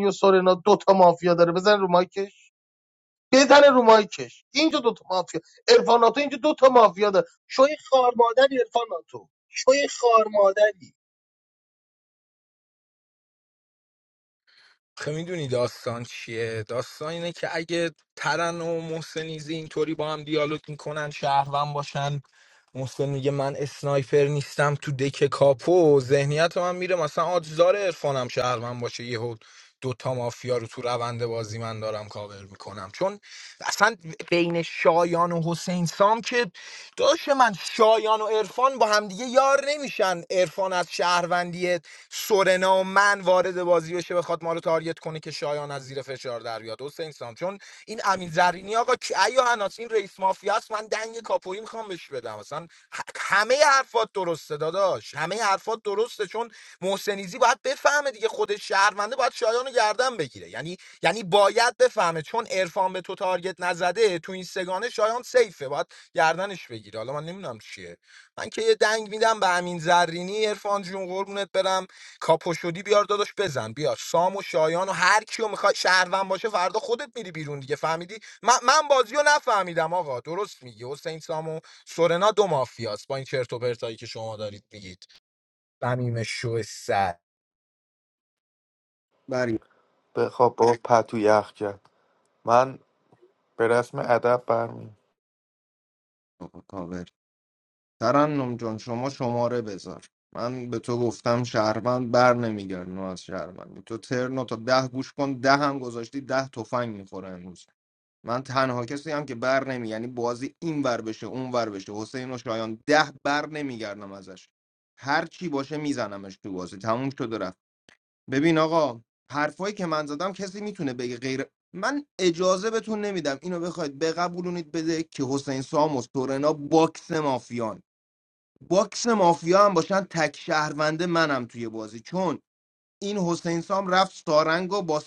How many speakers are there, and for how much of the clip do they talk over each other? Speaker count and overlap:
four, no overlap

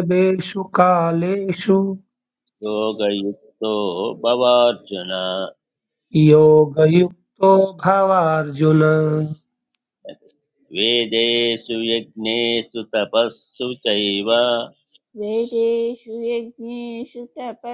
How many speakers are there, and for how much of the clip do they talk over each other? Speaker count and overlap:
three, no overlap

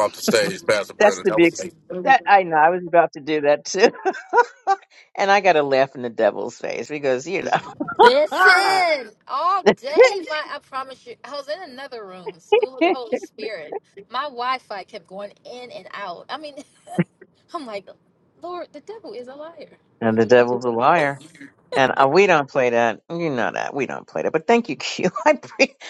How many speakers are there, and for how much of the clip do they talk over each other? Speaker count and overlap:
three, about 6%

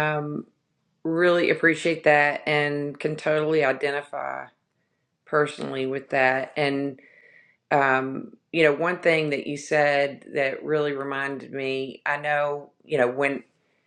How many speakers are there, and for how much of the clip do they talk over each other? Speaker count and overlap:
one, no overlap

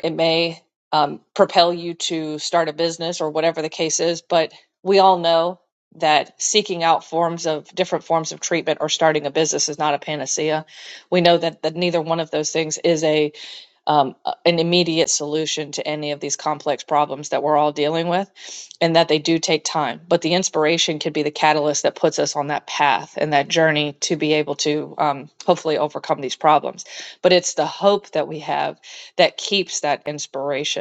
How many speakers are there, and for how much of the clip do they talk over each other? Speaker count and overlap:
one, no overlap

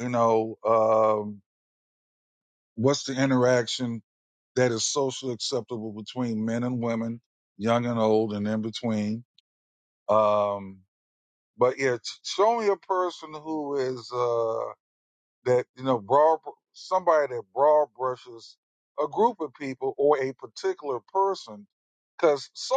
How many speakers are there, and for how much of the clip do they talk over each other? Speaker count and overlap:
one, no overlap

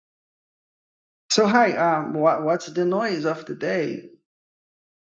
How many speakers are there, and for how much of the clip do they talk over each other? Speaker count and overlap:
one, no overlap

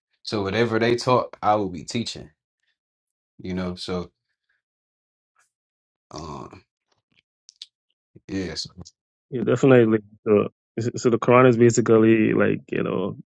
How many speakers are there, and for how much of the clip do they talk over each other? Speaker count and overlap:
two, no overlap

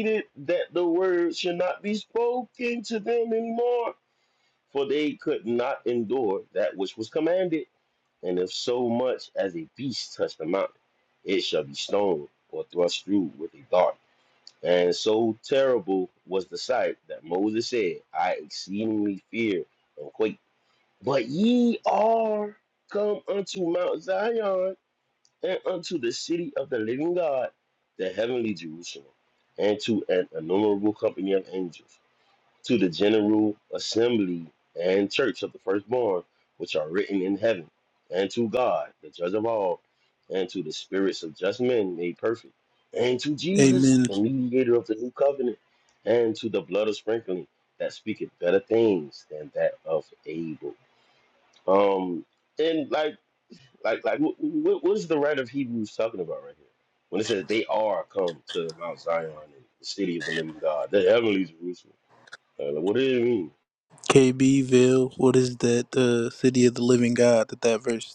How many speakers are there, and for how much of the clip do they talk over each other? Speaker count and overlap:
two, about 1%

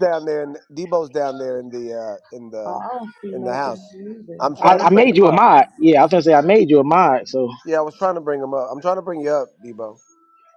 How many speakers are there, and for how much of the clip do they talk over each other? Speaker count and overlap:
three, about 15%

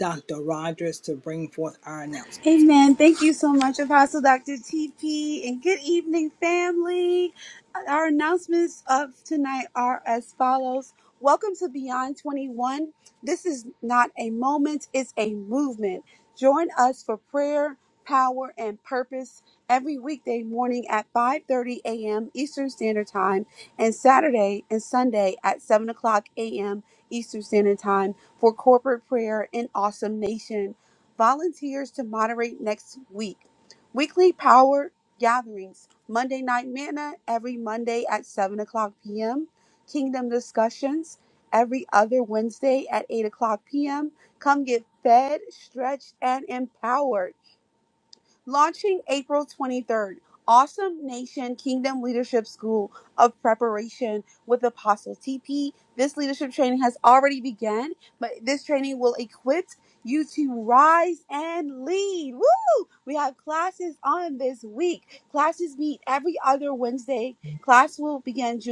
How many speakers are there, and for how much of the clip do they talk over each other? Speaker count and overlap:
two, no overlap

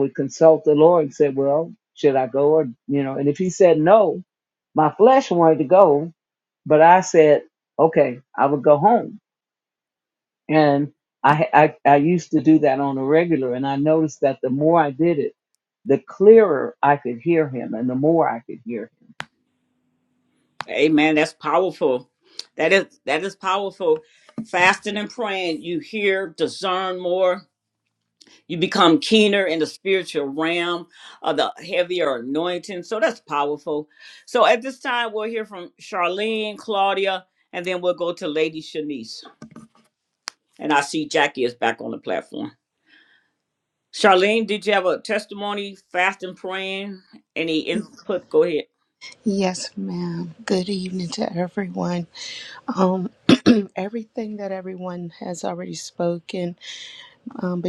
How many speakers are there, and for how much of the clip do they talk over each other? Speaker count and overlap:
three, no overlap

